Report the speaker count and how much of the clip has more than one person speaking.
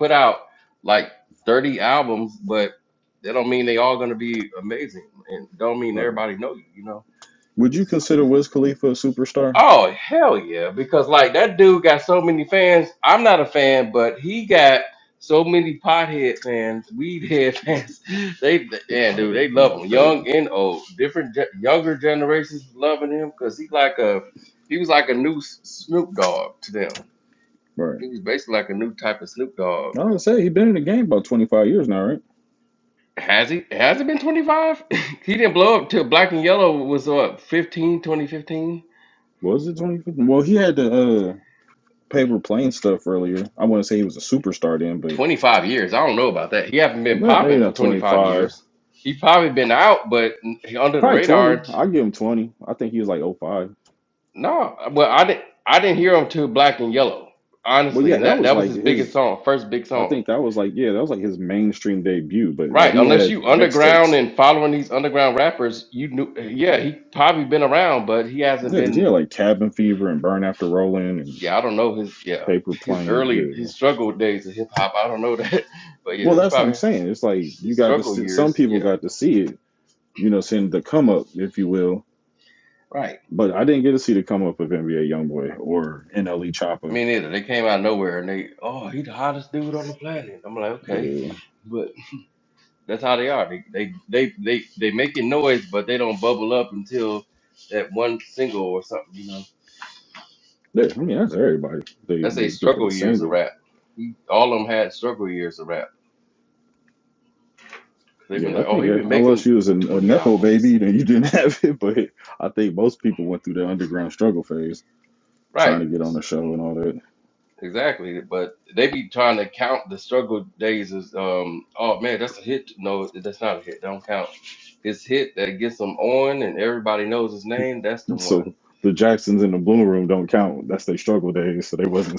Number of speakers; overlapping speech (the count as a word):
two, about 11%